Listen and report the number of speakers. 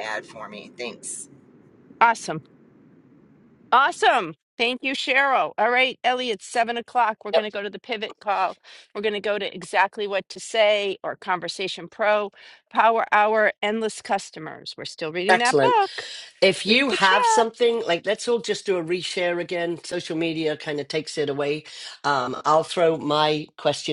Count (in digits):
3